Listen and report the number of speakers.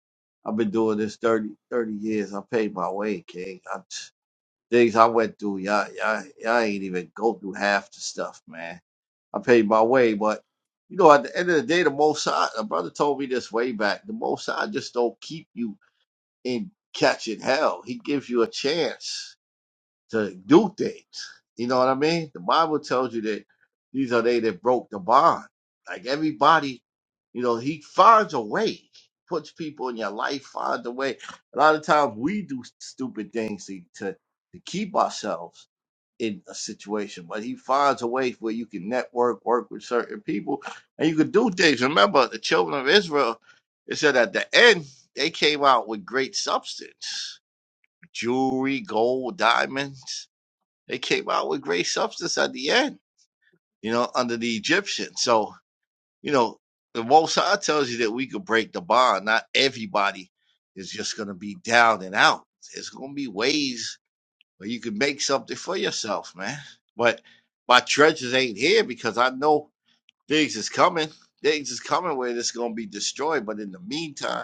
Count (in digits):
1